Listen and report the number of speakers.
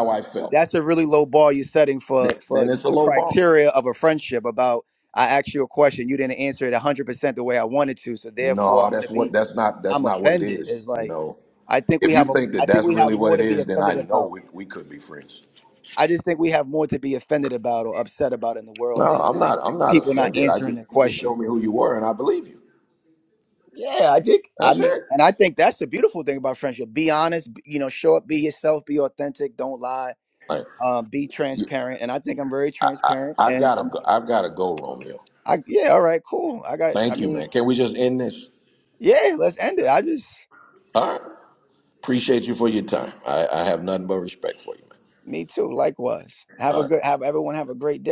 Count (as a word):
two